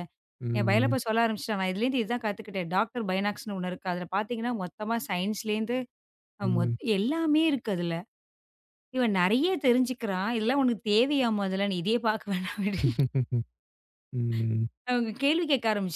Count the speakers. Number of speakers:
2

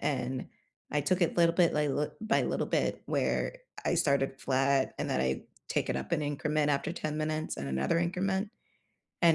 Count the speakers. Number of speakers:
1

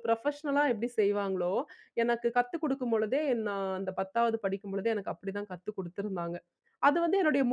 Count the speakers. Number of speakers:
1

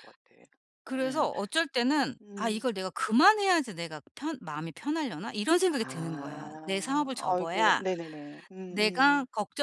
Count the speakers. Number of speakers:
2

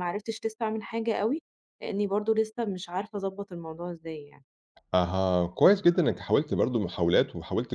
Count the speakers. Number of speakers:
2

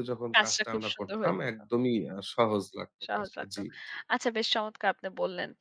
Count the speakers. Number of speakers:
2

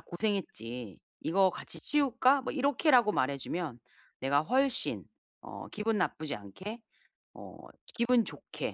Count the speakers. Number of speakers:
1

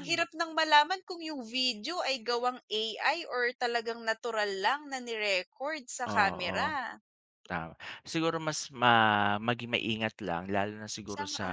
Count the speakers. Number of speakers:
2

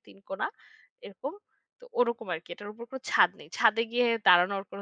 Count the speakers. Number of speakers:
1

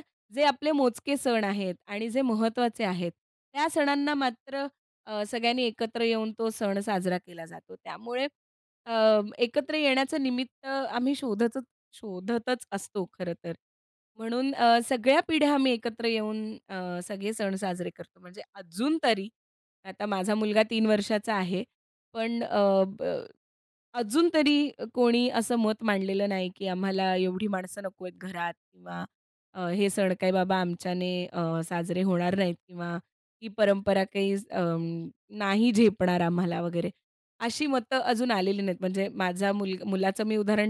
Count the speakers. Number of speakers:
1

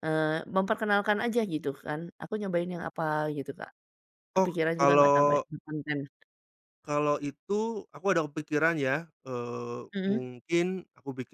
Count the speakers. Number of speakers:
2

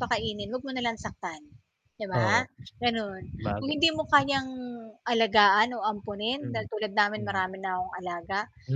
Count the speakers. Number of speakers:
2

